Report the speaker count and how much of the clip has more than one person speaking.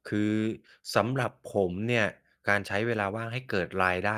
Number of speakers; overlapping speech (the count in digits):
1, no overlap